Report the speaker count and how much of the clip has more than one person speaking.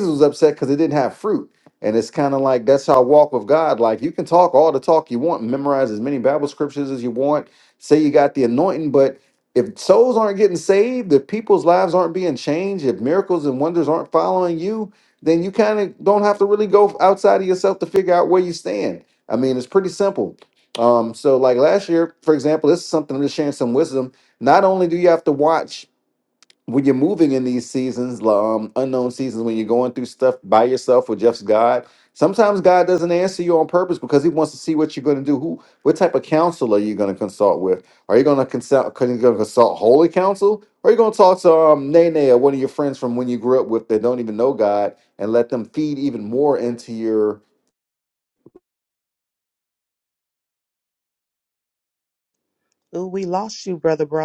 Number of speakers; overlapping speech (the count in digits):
2, no overlap